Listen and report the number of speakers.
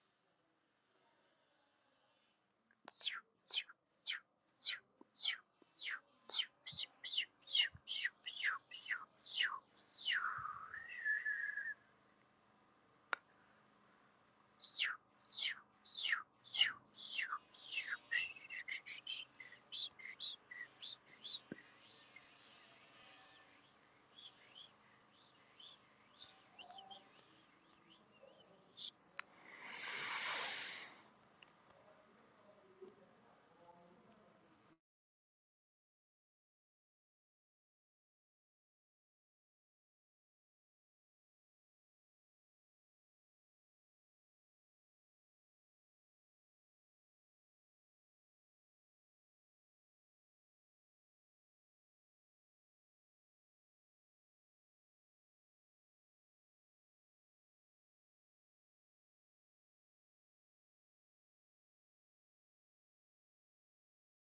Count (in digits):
0